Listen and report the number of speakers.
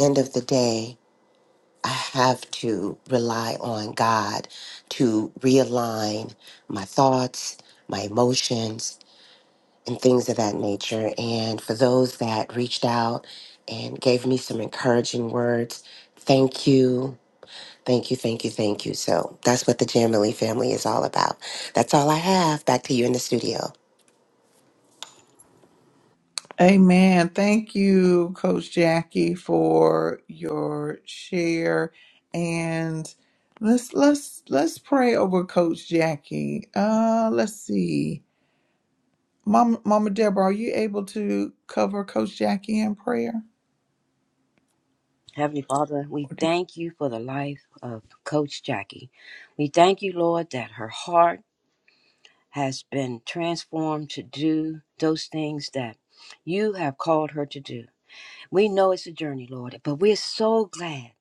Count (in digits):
3